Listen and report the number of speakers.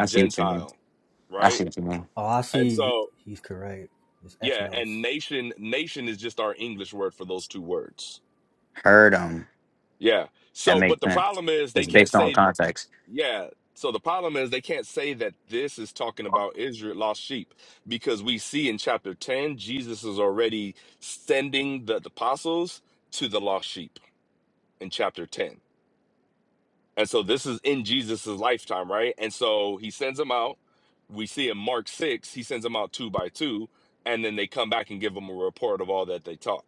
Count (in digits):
3